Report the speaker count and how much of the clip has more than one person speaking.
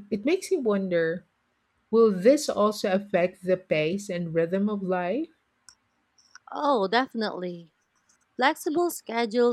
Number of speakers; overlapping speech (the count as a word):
two, no overlap